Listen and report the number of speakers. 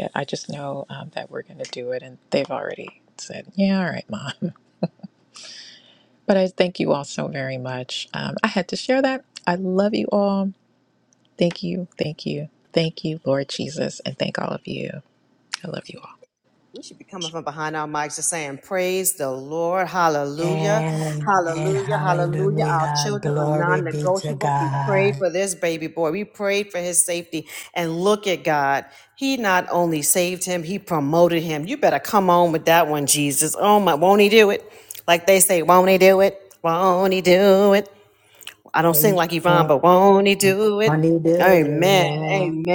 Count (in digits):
3